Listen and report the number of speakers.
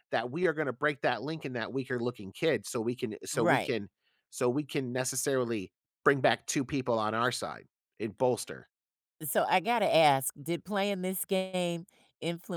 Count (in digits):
2